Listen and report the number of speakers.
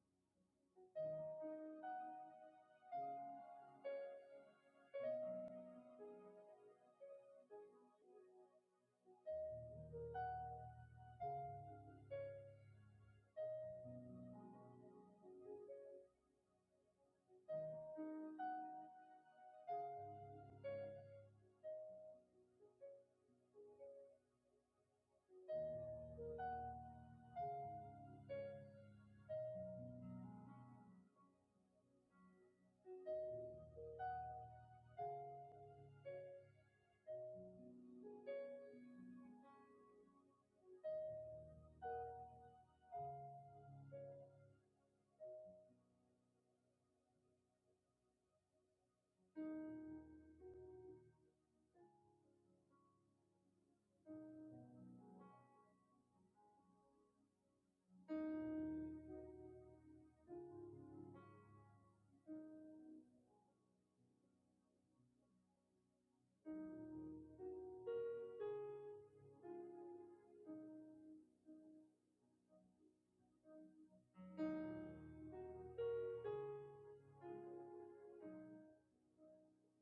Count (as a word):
zero